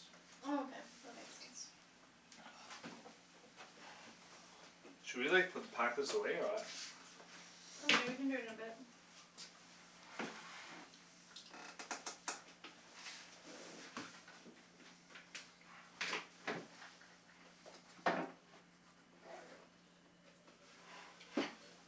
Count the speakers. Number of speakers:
two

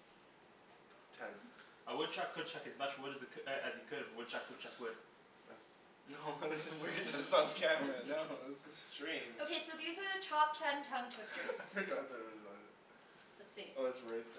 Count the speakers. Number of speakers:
four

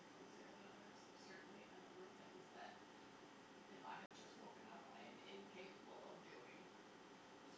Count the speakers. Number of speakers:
one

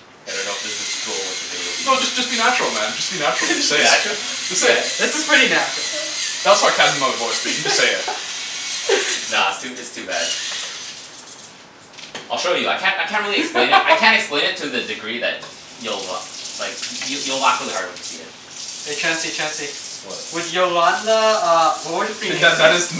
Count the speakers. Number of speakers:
three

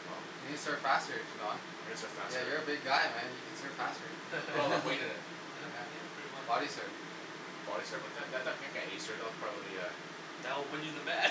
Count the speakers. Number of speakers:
three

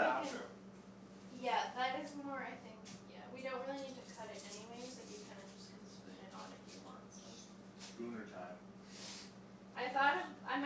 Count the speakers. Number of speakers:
two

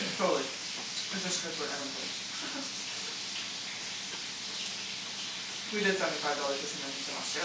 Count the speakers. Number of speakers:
one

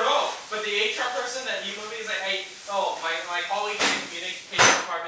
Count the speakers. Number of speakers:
one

